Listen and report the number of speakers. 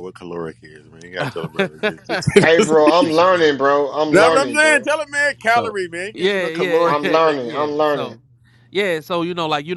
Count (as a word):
three